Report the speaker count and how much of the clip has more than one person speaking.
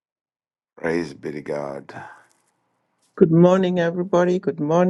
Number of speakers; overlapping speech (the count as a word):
two, no overlap